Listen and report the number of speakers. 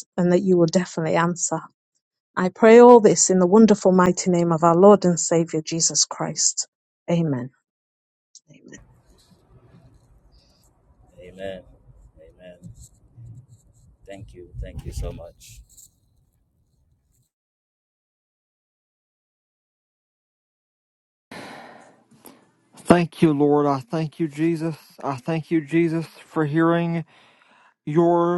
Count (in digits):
3